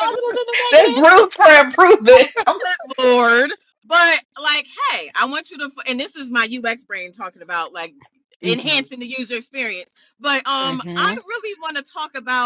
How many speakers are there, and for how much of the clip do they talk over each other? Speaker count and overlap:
3, about 9%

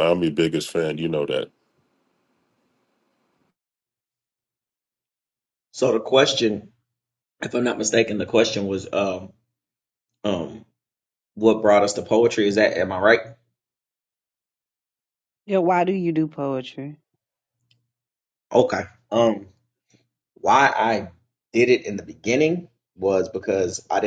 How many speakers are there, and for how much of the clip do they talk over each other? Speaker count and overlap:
3, no overlap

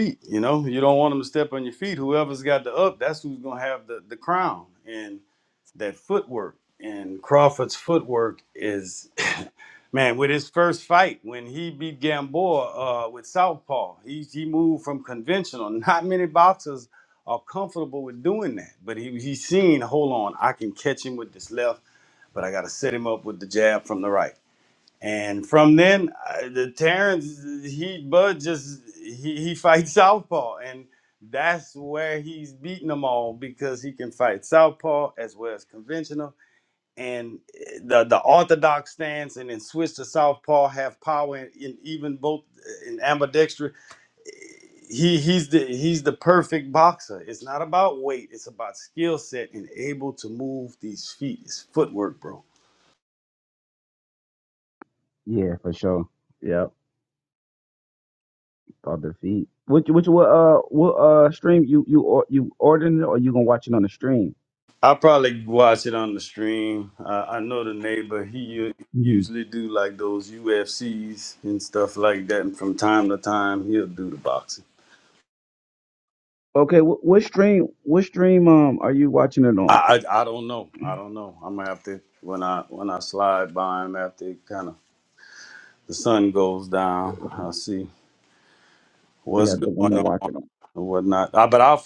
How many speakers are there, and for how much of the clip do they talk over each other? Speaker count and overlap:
2, about 1%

